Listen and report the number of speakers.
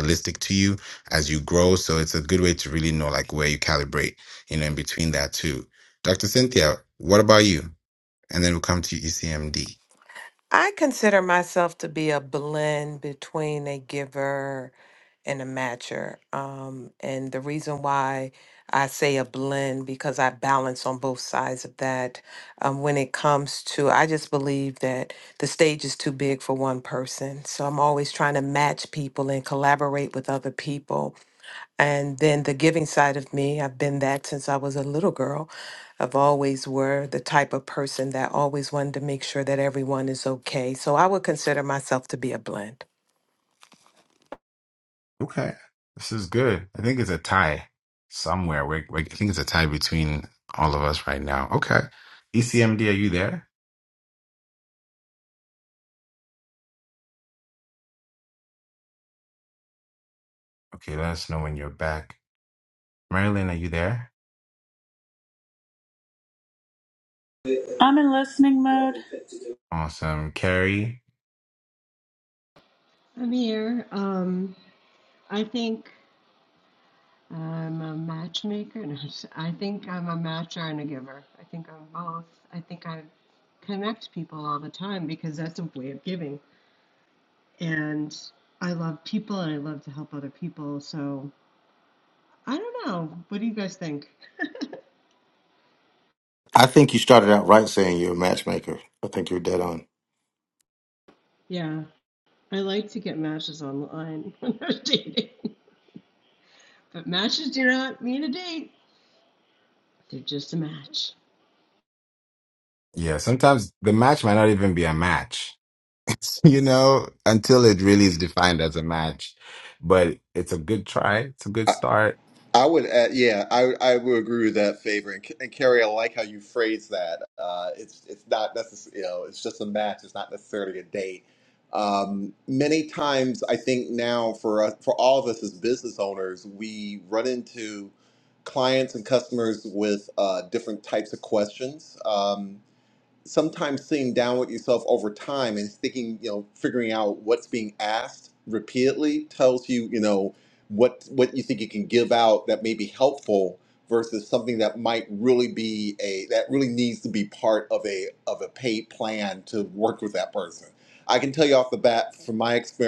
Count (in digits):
6